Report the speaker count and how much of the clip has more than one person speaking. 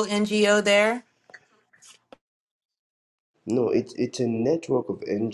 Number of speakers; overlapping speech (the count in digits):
2, no overlap